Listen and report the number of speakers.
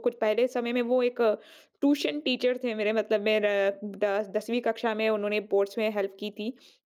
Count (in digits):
1